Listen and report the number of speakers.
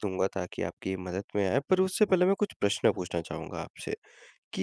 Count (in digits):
1